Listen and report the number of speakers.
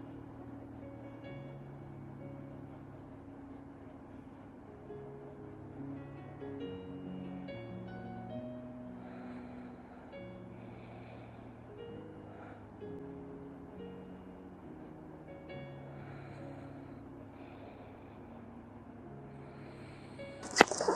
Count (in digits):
0